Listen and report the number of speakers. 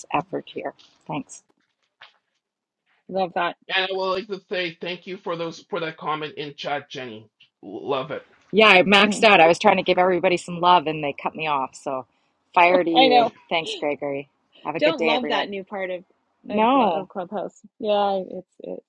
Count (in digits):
3